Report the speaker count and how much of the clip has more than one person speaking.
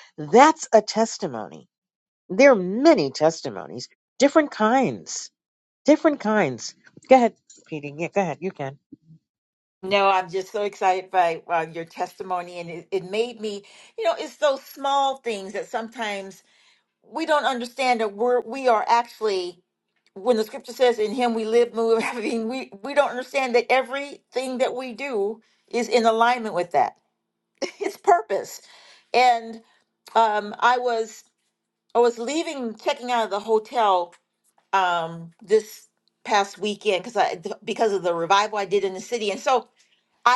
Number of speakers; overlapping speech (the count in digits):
2, no overlap